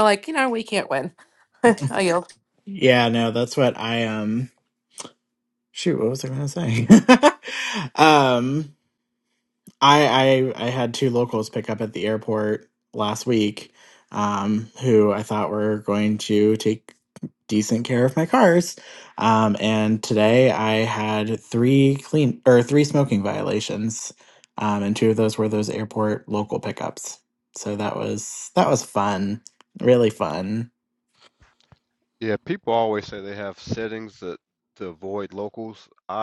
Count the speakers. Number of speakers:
3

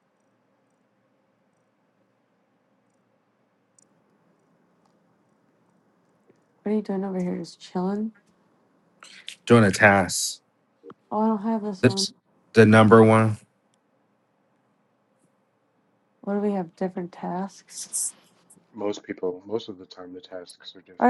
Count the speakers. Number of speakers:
3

